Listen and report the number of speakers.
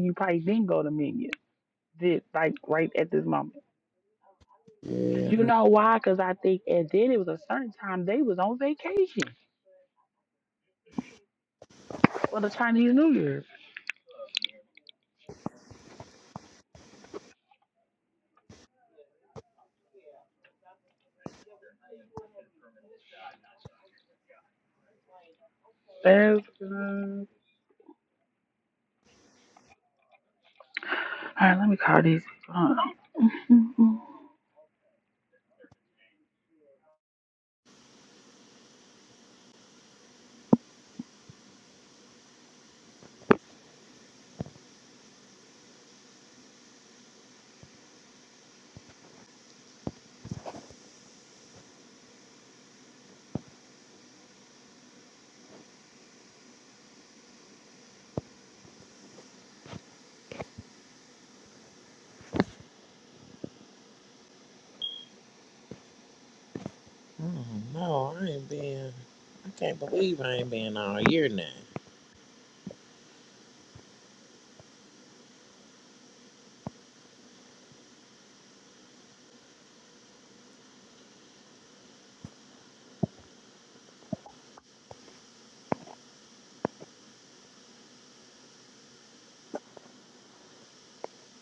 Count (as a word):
two